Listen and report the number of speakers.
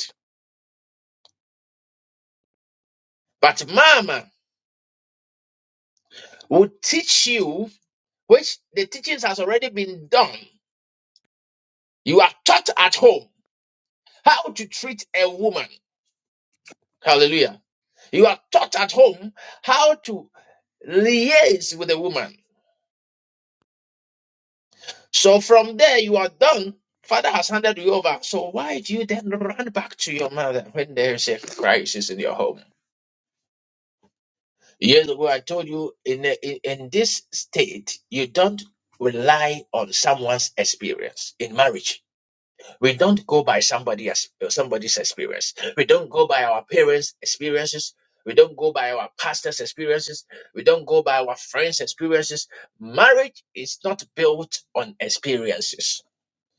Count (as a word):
one